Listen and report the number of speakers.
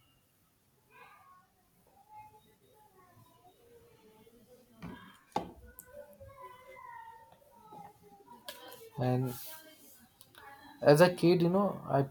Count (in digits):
1